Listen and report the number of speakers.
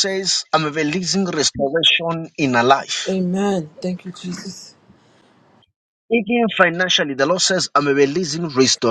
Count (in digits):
2